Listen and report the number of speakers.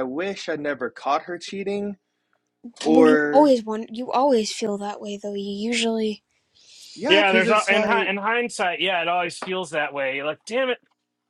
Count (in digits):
3